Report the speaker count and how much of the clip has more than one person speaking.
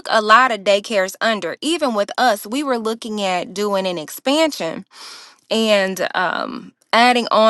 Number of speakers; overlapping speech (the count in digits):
1, no overlap